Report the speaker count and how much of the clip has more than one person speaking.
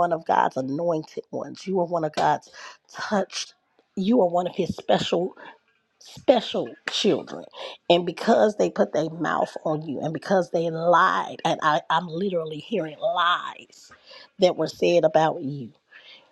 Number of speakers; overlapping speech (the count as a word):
one, no overlap